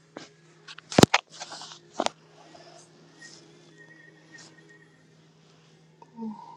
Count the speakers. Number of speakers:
zero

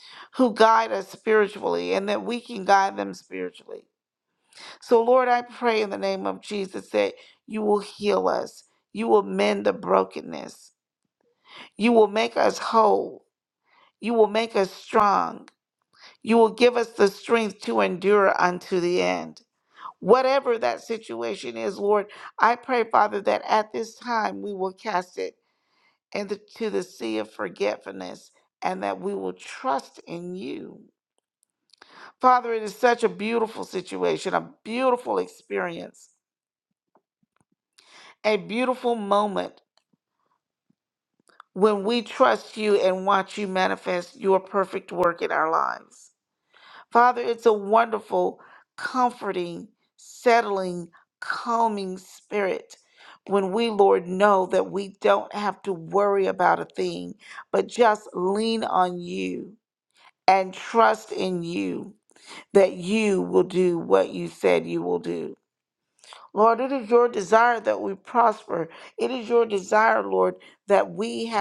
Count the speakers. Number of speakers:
one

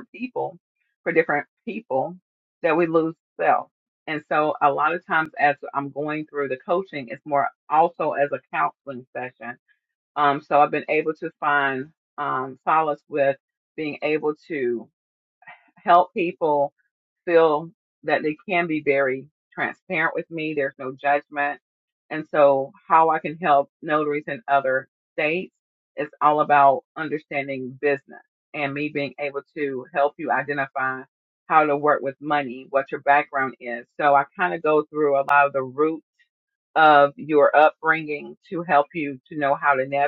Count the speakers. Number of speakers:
one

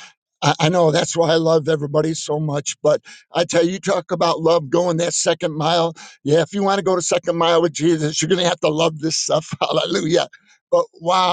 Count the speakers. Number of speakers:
one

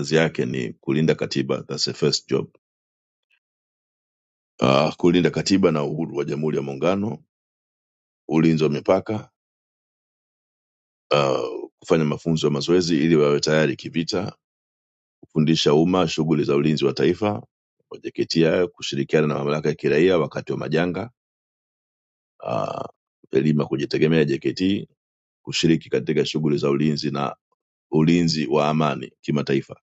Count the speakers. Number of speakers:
one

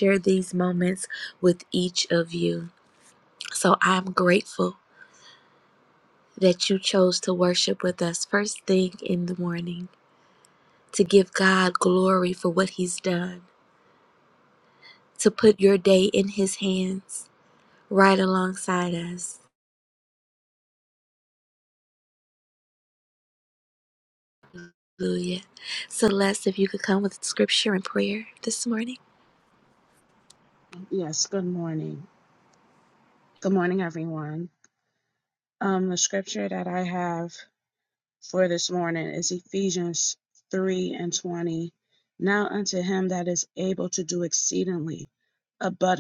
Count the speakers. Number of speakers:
two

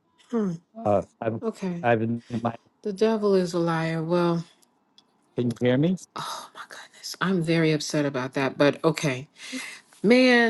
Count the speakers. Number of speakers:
two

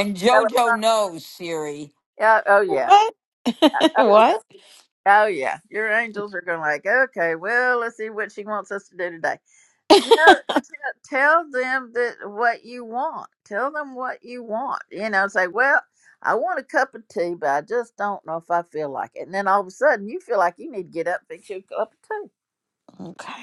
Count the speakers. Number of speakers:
three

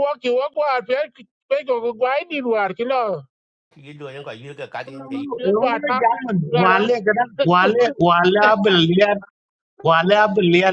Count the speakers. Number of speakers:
three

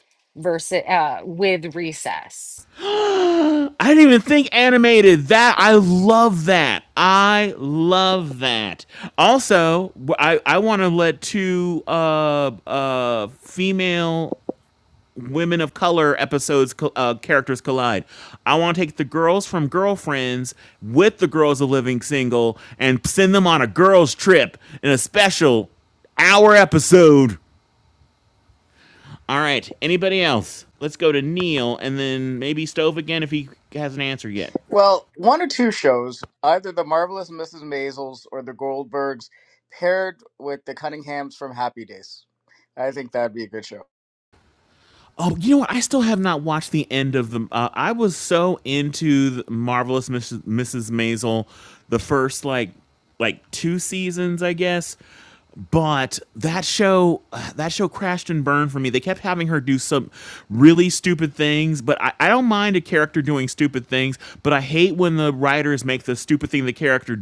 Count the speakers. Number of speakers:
three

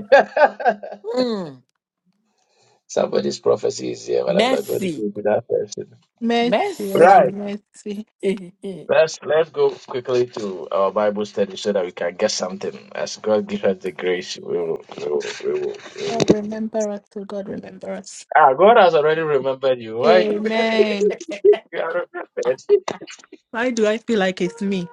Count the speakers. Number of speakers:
three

